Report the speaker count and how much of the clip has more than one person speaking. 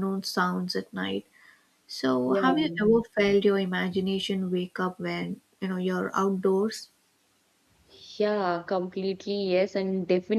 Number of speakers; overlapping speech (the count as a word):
two, about 5%